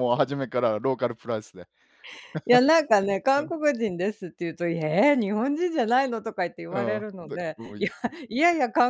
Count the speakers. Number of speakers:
2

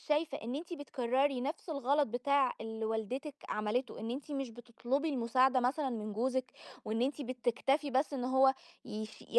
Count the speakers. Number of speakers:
1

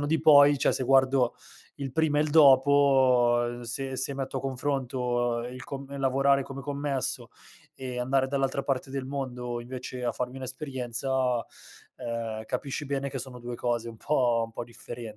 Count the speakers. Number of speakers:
1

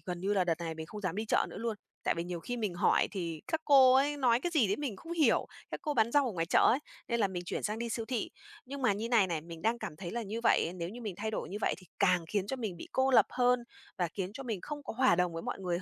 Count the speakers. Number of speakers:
1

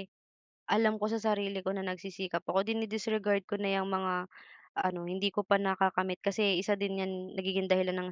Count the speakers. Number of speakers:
1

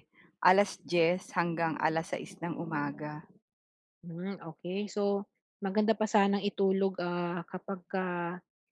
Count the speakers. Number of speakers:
2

